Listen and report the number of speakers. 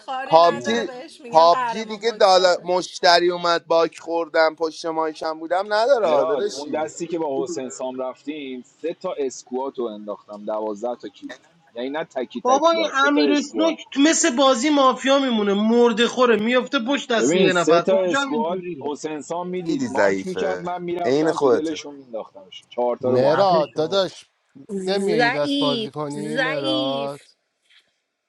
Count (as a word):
five